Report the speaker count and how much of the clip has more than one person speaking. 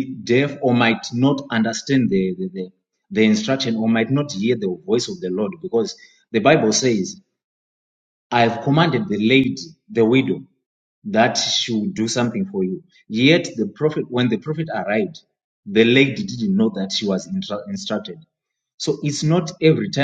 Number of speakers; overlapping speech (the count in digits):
1, no overlap